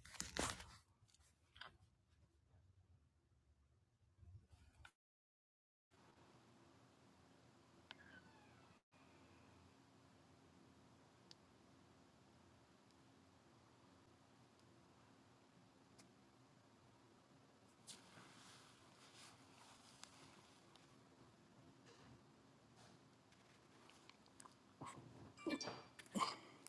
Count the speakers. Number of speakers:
0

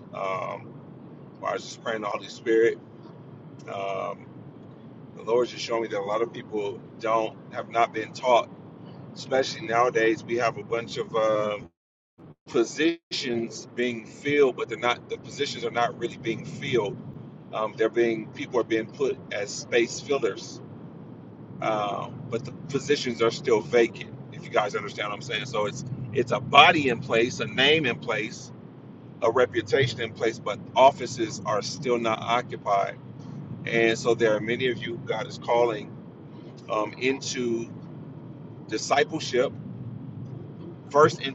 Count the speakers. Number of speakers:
1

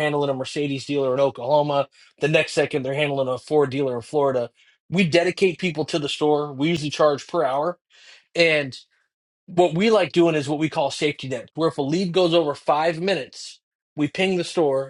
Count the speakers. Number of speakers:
1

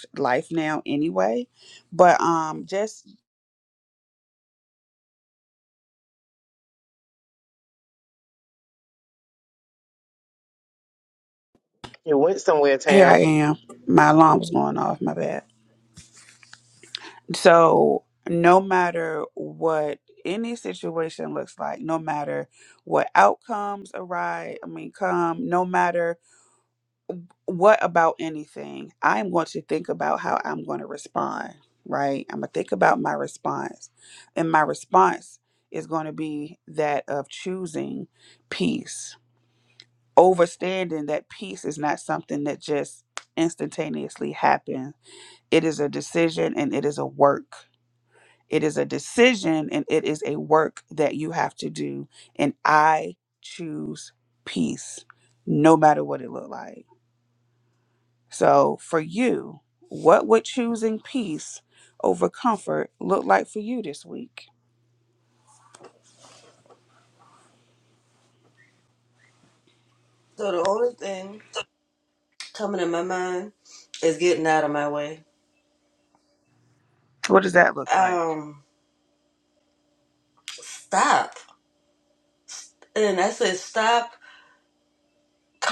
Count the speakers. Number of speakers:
3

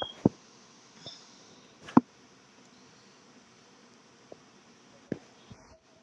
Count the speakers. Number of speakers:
0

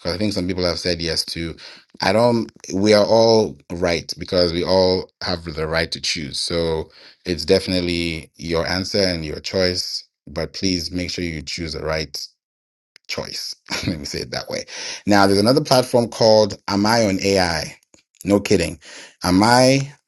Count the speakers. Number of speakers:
1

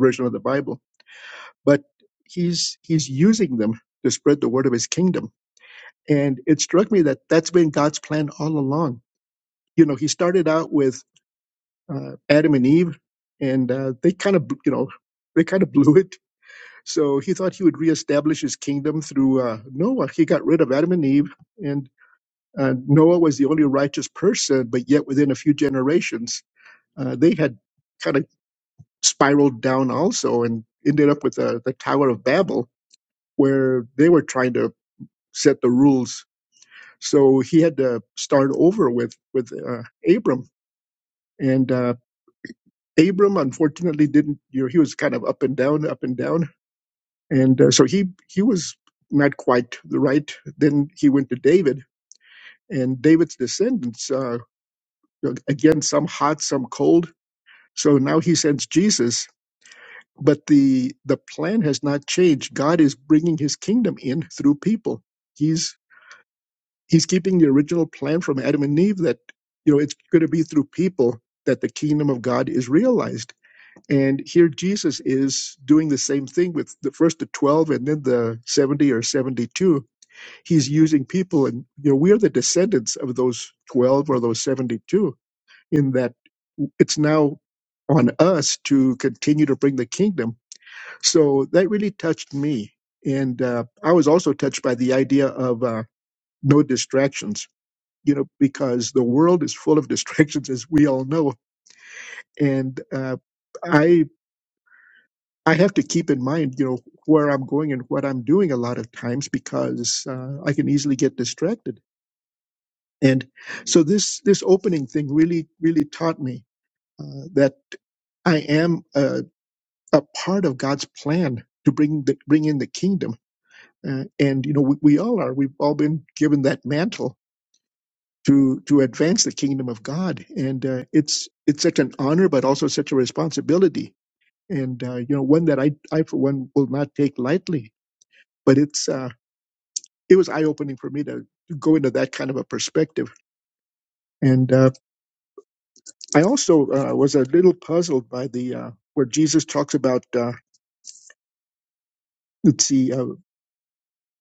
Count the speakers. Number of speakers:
1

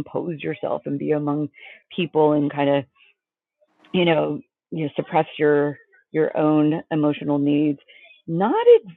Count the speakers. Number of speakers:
1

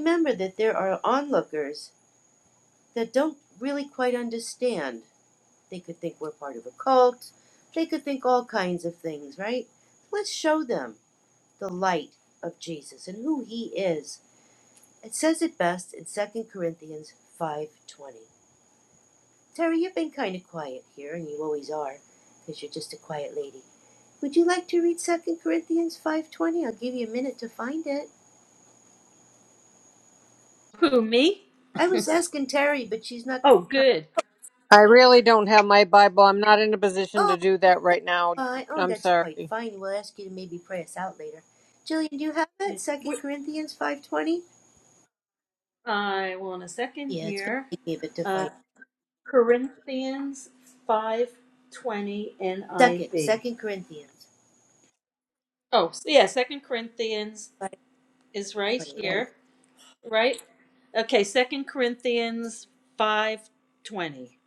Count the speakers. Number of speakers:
3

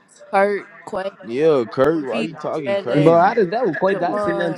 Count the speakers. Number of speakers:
3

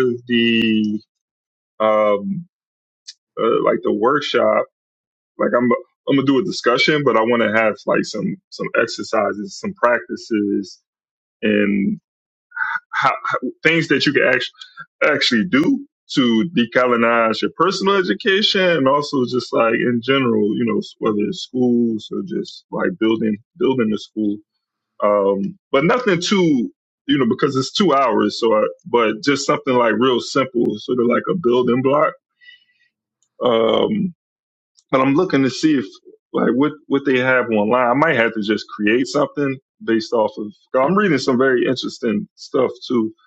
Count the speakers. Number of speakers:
1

